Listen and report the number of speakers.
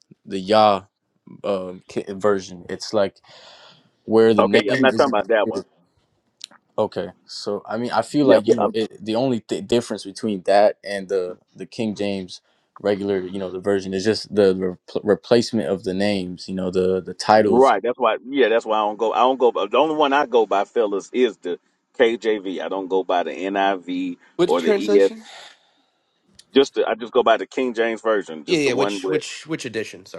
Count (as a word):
three